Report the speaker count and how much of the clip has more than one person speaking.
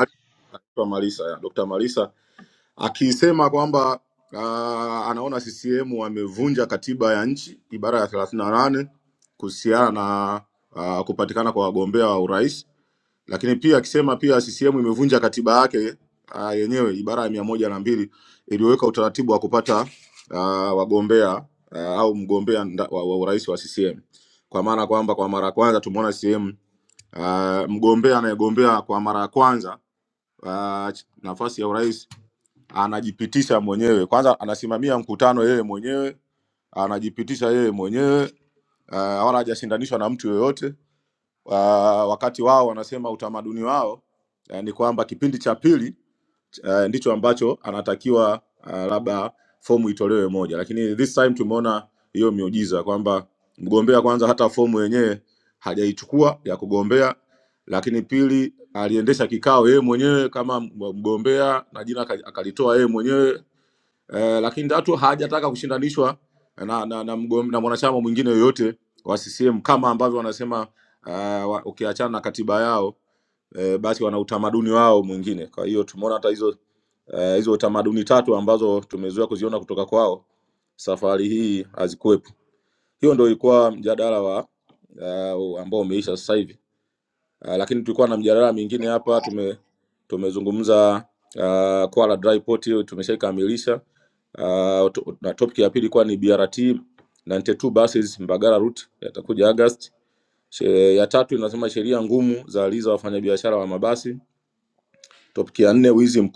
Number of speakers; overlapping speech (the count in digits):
1, no overlap